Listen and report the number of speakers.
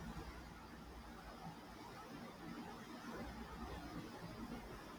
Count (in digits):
0